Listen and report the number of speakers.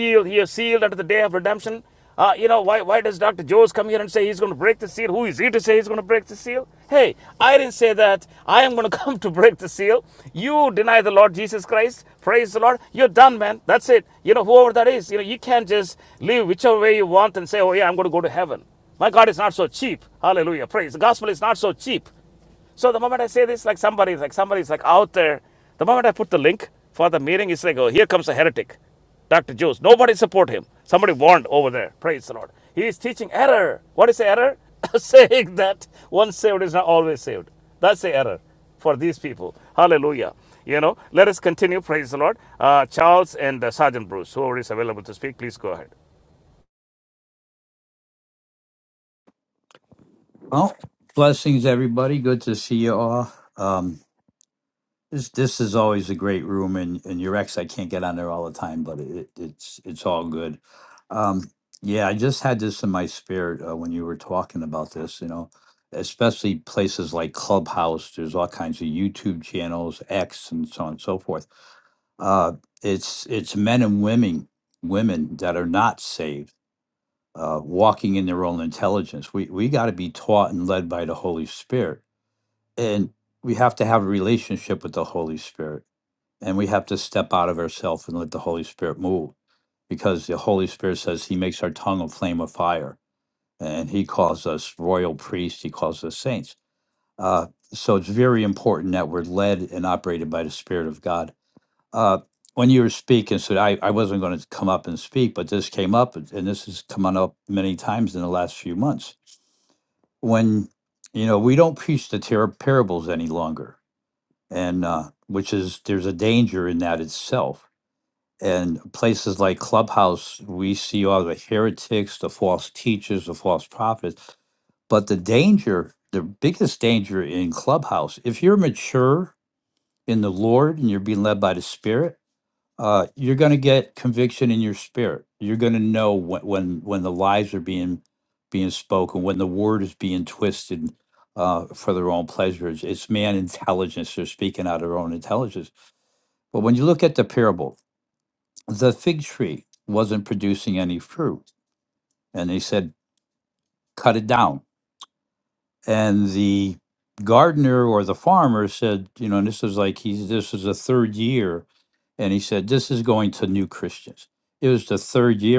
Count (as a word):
two